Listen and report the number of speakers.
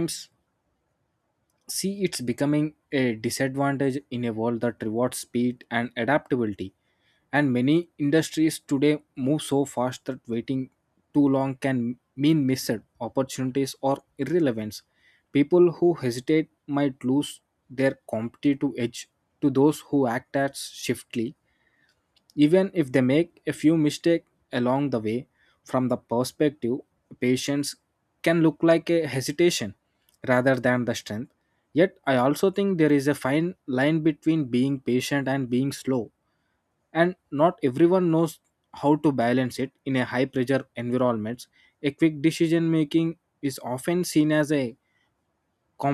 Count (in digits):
1